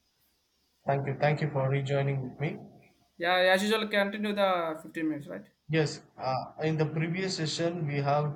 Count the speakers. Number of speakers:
two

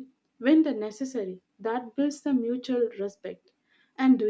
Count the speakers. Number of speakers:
one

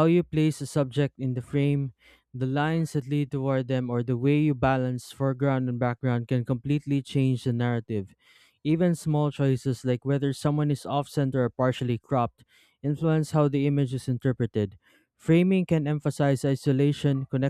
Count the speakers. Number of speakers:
one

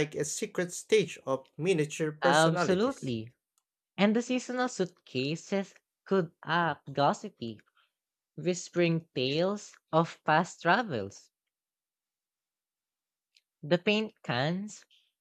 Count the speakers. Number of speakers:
two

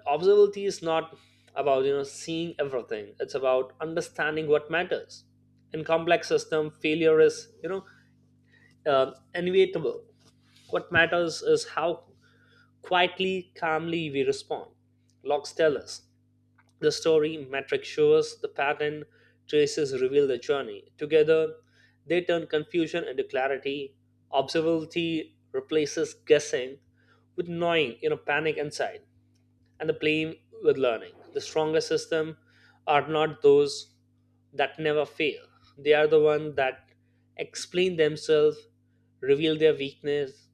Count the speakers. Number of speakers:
one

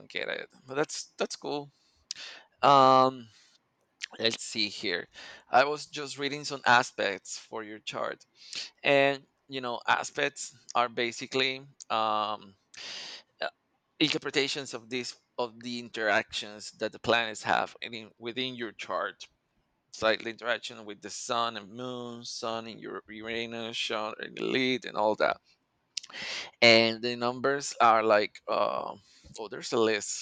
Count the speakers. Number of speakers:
one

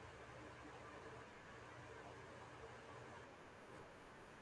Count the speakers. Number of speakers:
zero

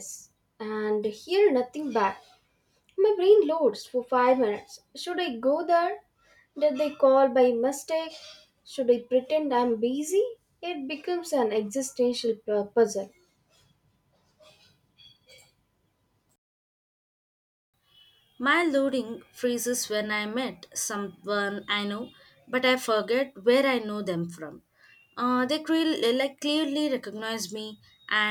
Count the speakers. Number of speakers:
two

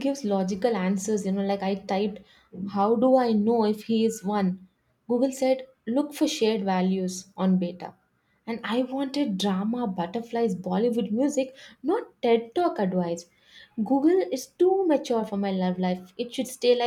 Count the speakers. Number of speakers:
one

